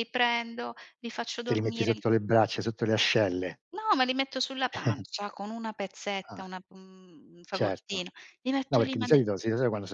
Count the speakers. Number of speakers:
two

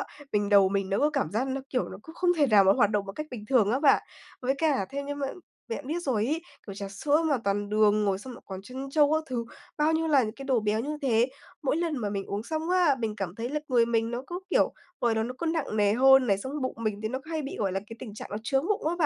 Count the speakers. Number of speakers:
one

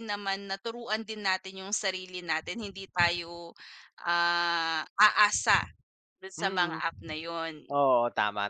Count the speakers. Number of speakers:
two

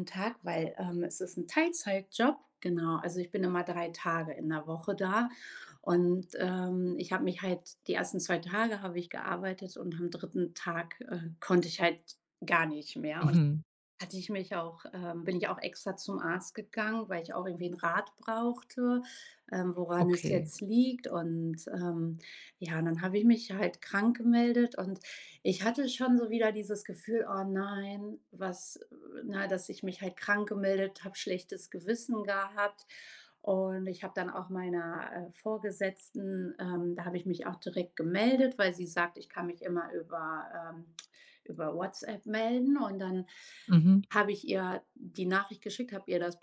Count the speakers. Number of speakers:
two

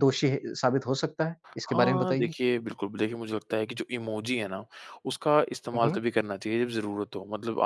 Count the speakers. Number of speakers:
two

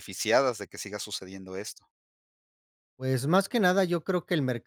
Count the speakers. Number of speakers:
two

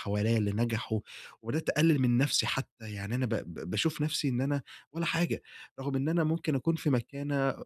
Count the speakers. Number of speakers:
one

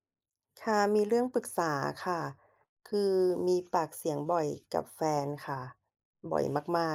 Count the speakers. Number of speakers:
one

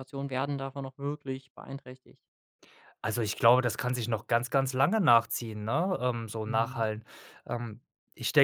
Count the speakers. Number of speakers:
two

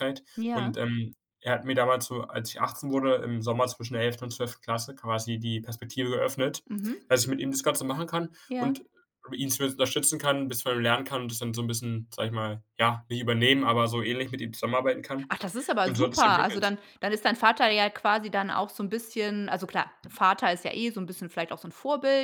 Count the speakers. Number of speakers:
two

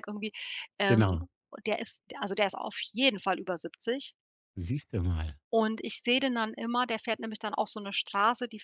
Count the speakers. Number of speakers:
two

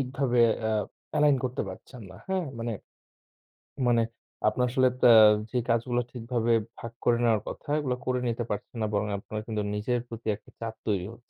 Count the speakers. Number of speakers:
one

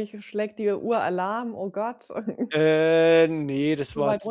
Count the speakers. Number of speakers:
two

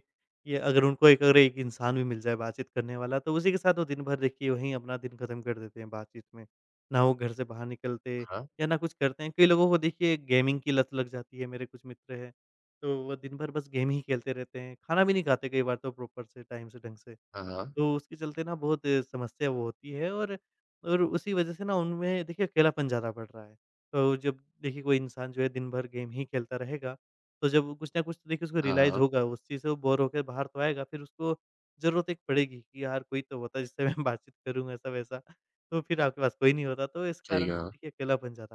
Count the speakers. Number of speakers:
two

